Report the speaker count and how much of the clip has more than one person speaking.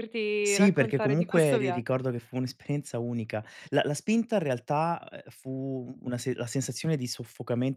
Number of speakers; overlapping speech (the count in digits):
2, about 17%